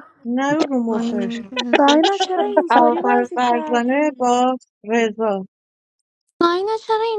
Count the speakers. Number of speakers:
three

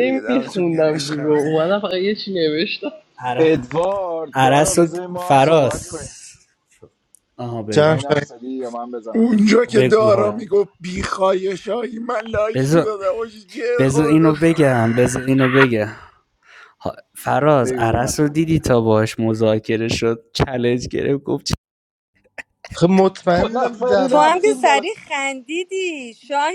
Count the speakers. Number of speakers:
six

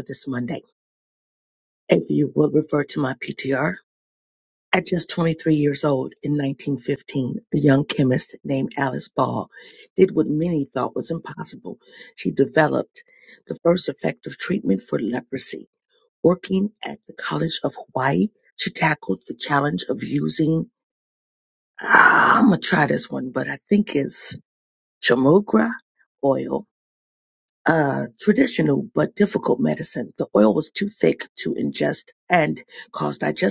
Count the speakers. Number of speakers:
one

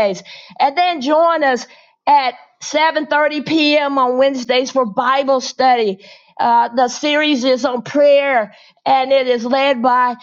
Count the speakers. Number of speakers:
one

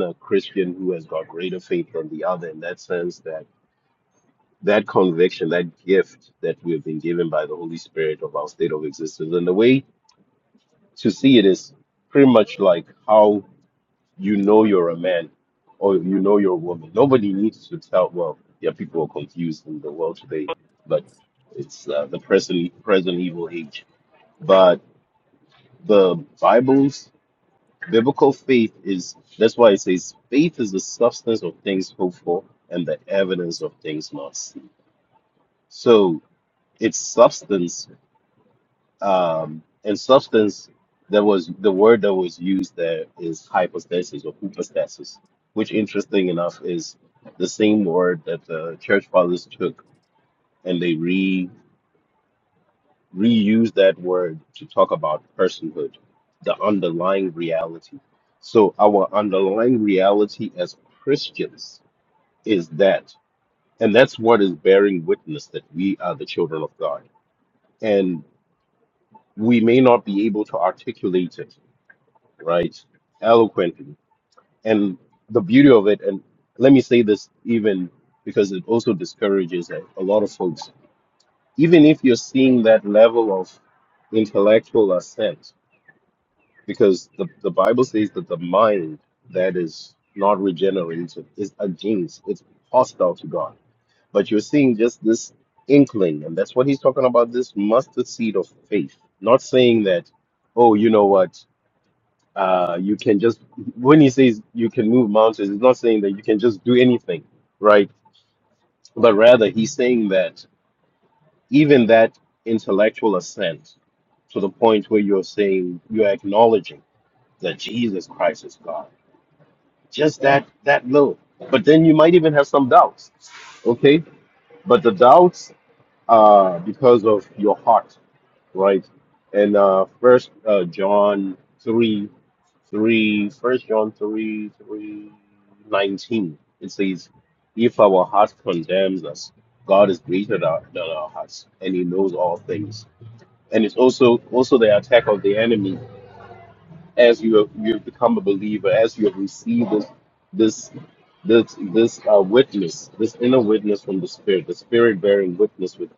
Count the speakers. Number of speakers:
one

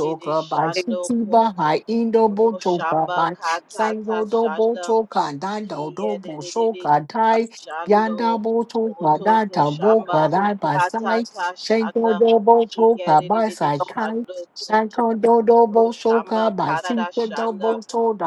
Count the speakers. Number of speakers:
two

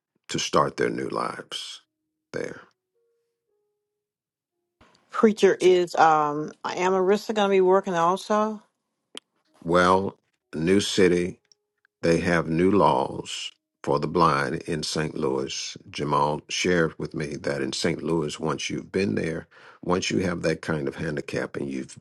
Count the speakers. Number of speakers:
two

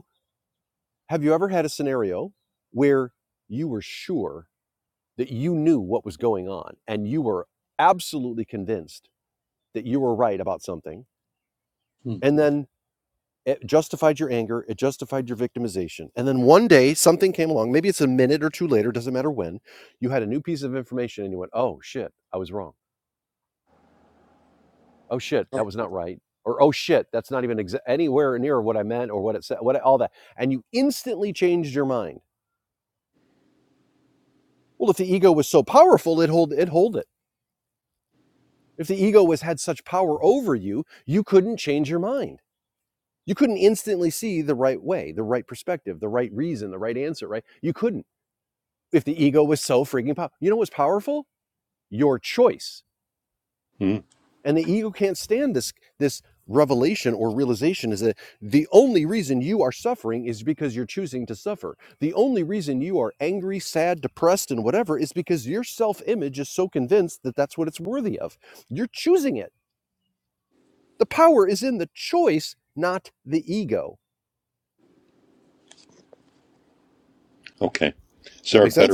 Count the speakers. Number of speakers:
two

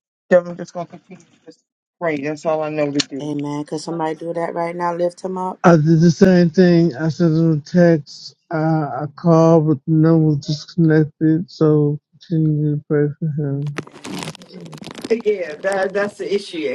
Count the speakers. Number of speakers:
four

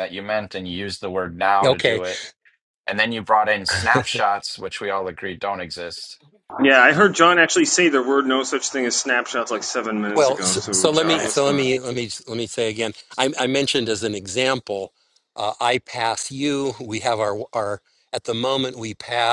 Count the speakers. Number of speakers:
three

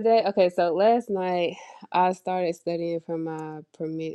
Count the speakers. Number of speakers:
one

